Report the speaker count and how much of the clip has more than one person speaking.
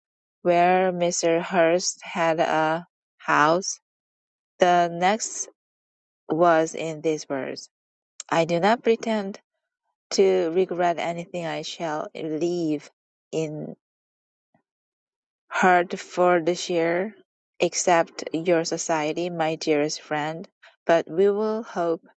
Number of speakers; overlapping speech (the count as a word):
one, no overlap